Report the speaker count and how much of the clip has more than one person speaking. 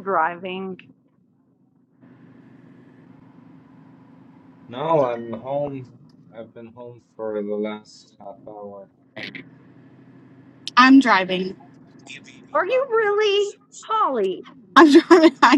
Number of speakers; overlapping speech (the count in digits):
3, no overlap